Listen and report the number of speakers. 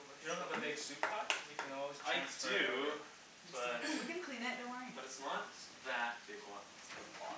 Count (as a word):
three